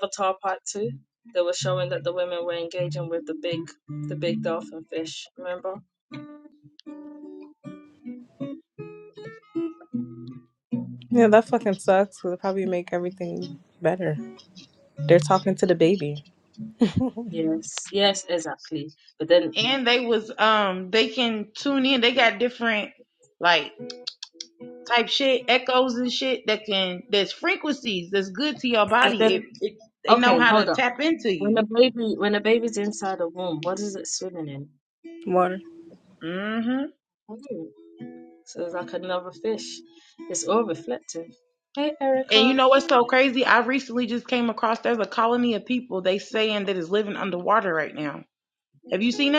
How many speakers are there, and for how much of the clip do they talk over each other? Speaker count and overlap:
3, about 3%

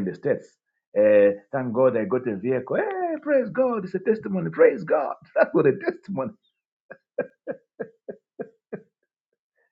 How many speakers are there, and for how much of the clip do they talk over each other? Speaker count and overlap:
1, no overlap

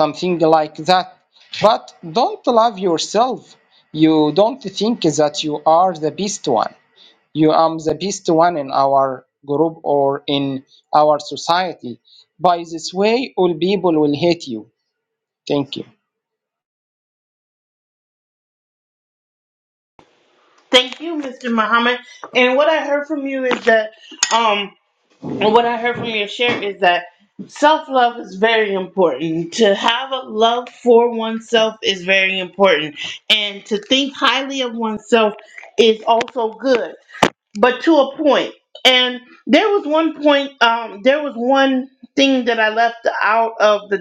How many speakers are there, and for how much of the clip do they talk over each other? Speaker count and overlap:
2, no overlap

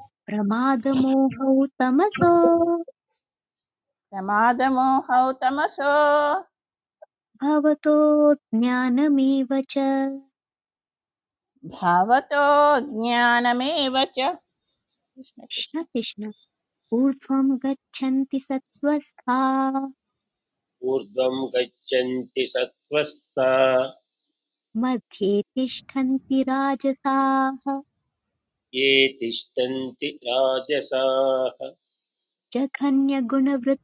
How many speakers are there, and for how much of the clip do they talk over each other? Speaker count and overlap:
3, about 1%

